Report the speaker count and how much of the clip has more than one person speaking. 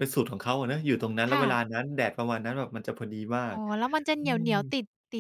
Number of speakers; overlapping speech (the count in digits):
2, about 12%